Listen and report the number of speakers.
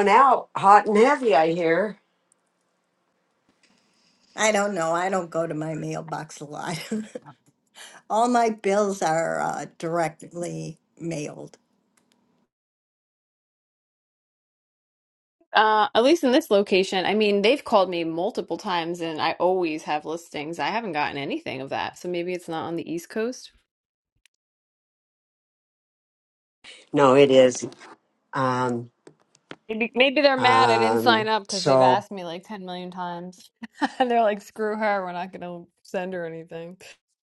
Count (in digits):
3